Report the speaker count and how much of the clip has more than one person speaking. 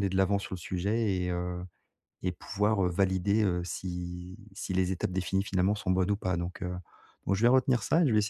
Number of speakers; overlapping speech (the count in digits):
1, no overlap